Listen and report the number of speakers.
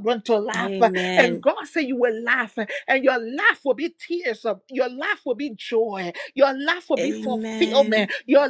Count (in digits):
2